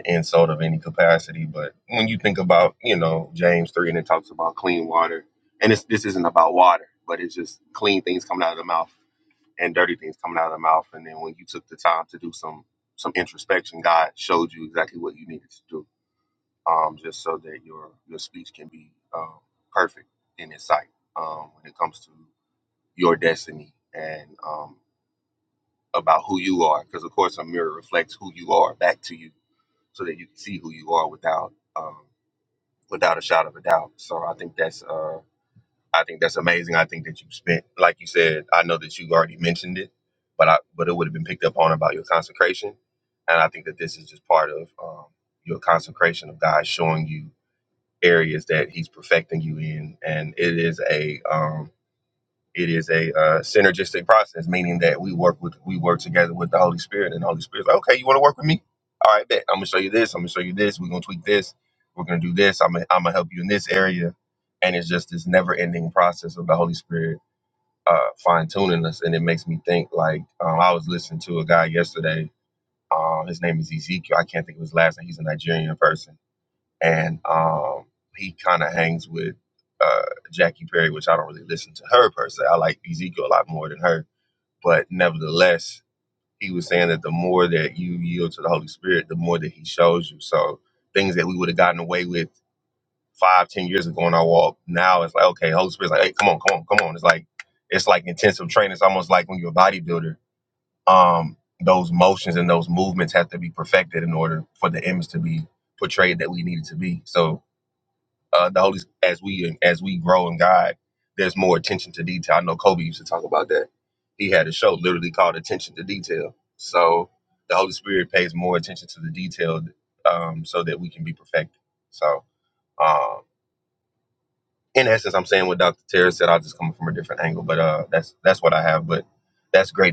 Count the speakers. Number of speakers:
1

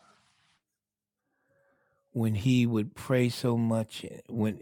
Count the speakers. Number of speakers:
1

